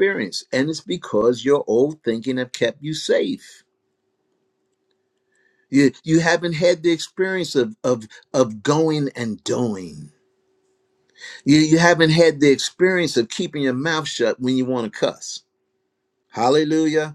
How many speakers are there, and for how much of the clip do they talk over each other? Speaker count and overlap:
1, no overlap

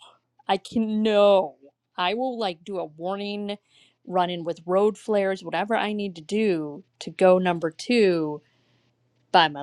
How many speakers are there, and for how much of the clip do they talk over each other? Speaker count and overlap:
1, no overlap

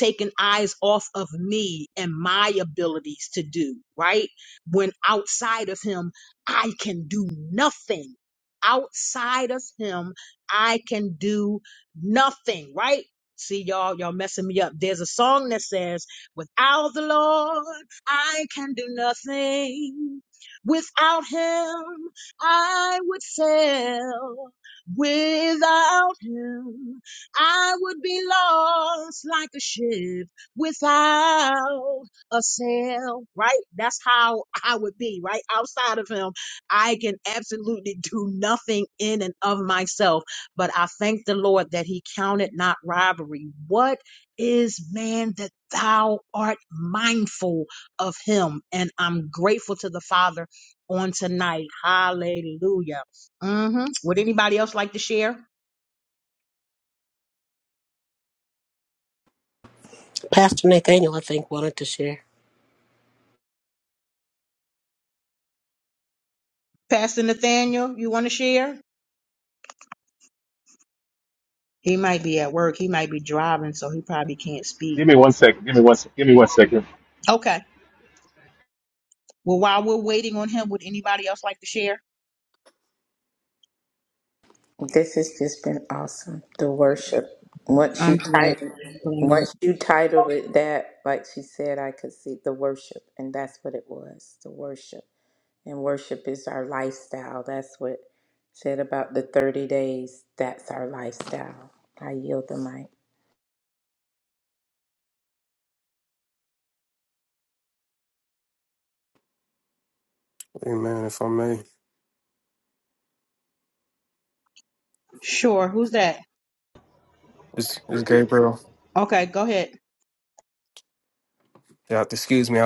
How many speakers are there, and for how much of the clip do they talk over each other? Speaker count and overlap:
5, about 1%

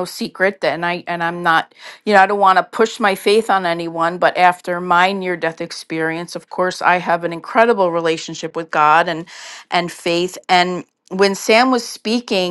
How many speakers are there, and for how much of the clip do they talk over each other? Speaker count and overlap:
1, no overlap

